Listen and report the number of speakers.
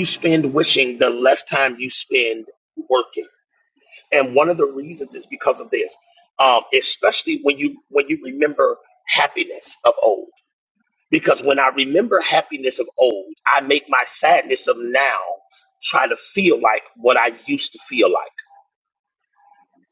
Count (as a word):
one